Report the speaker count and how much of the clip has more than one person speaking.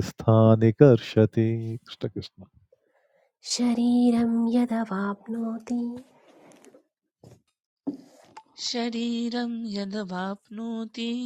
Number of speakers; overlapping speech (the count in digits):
3, no overlap